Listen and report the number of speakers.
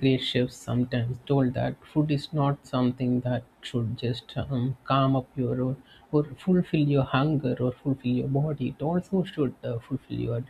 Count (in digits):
1